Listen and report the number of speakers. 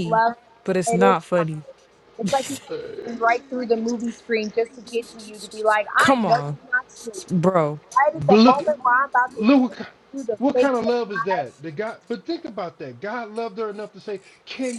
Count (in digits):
3